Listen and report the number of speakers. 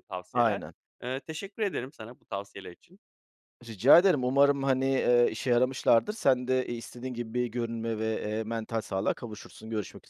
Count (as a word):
two